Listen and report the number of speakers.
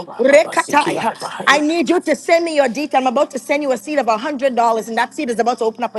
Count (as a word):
two